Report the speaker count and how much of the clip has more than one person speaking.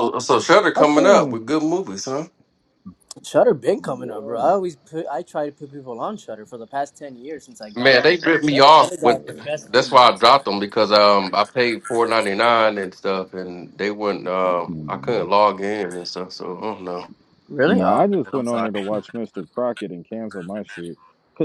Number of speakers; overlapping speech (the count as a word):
three, about 21%